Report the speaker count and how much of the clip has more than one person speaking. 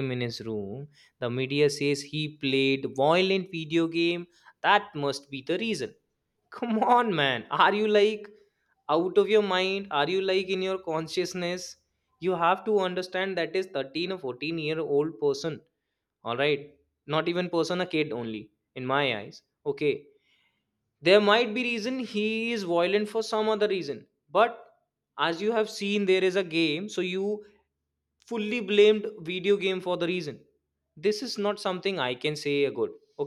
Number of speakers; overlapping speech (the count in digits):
1, no overlap